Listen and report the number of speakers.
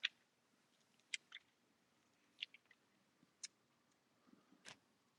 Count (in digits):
0